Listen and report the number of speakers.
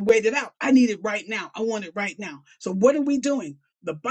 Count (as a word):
one